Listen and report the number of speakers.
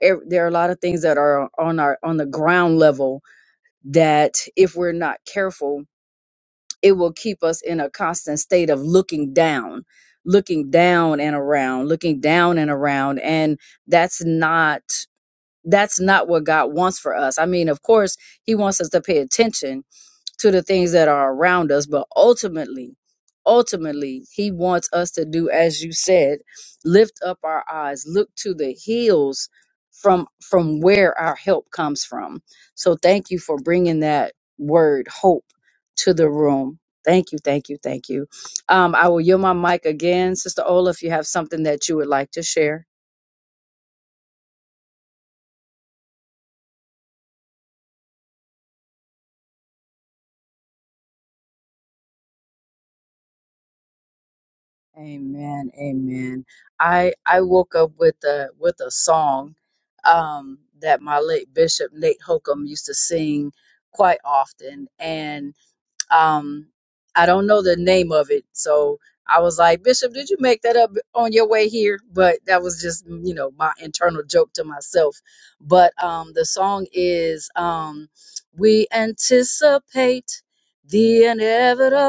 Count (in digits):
1